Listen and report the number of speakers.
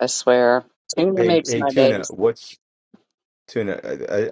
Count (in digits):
2